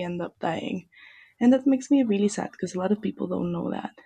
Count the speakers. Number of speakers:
1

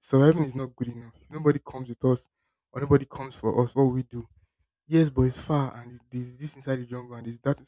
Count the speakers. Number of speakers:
1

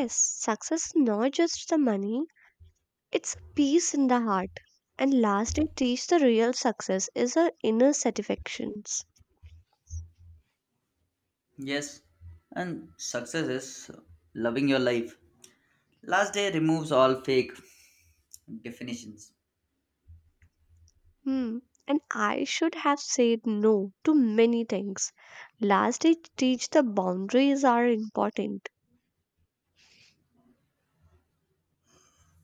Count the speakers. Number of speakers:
2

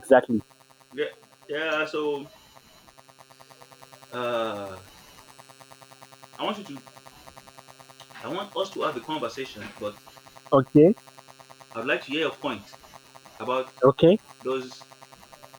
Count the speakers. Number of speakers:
2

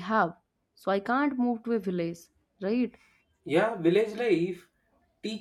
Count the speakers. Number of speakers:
2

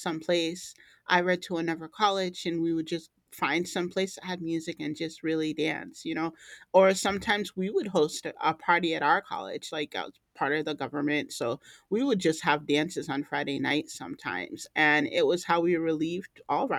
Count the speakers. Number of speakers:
1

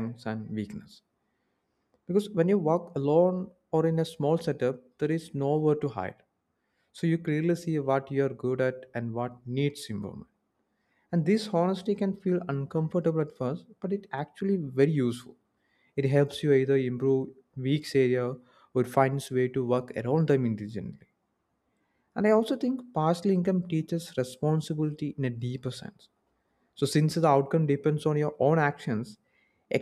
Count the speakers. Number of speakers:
1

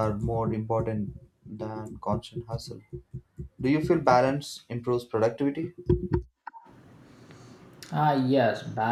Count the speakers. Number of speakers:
2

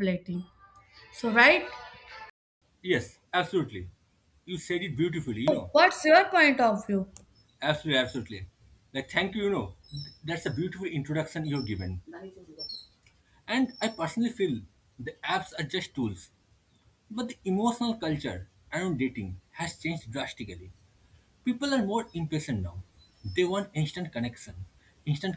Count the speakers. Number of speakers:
2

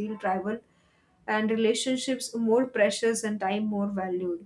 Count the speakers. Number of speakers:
1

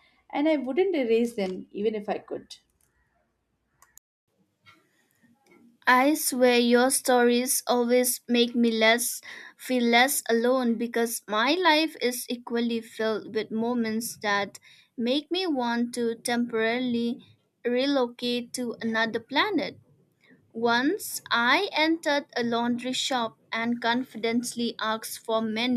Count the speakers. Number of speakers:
2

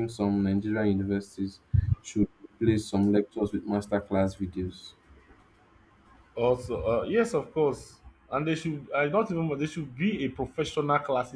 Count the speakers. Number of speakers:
2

